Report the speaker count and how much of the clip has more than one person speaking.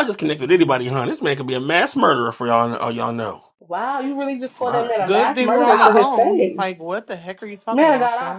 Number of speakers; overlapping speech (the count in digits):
3, about 33%